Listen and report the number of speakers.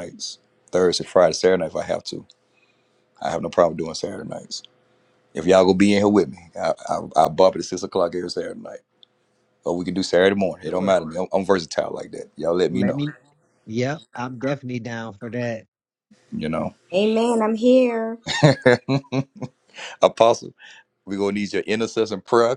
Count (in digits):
3